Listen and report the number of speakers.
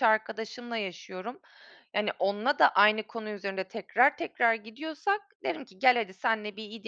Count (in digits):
1